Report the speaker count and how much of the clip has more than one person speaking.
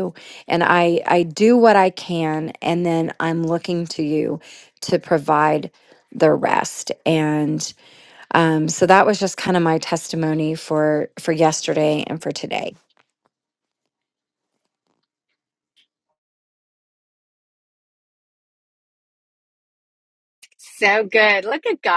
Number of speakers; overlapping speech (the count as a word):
two, no overlap